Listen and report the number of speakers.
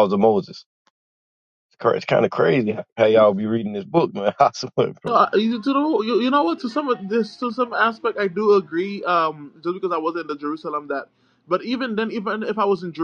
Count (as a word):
two